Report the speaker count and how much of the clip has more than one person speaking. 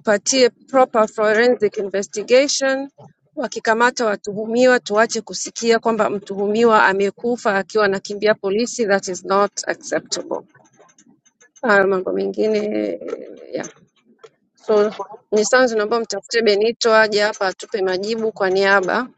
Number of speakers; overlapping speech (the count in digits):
1, no overlap